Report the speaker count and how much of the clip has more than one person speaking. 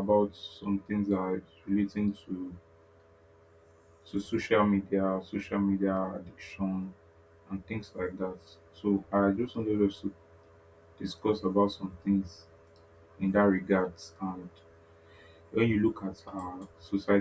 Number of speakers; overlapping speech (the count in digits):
1, no overlap